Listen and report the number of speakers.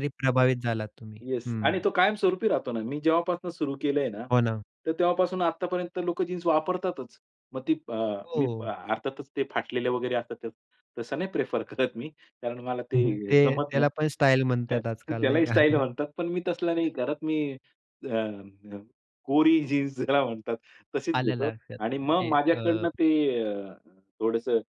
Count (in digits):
2